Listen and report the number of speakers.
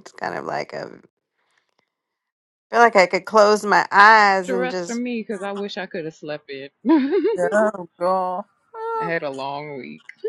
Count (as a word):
three